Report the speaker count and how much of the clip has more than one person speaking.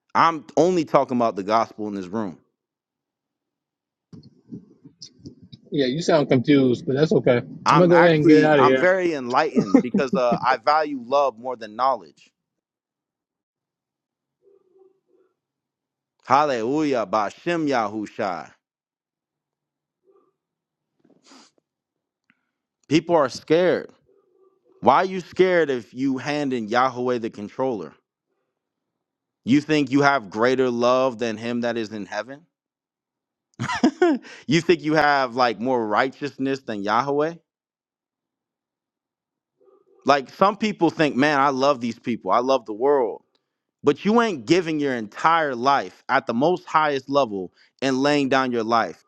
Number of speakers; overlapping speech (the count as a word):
two, about 2%